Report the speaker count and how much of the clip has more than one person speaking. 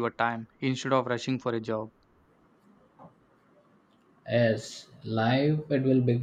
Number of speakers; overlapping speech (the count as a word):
two, no overlap